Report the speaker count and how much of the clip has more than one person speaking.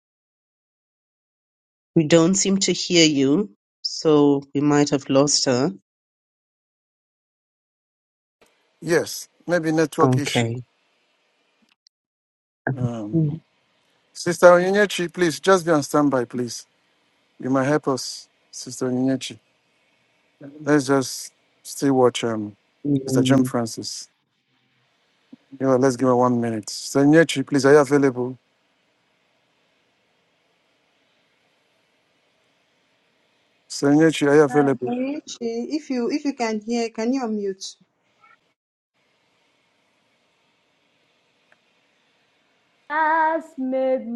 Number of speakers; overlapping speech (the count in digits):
4, about 2%